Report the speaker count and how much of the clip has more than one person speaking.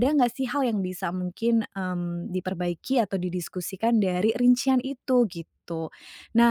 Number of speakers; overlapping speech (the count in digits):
1, no overlap